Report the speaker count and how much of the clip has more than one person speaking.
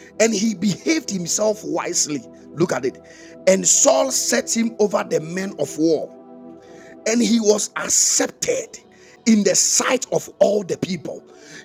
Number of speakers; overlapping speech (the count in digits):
1, no overlap